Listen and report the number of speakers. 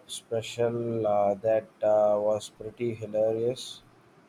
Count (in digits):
1